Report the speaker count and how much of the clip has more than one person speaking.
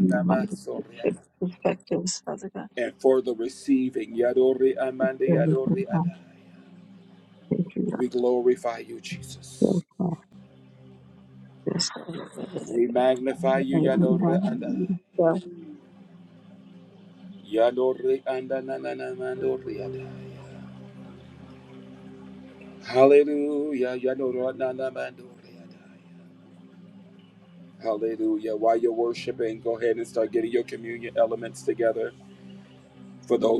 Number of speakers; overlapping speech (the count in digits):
2, about 11%